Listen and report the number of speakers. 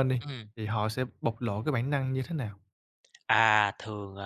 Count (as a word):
two